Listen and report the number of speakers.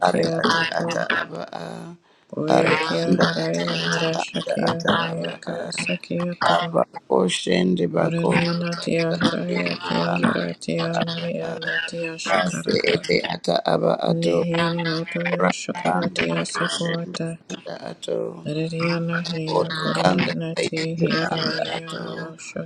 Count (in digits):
2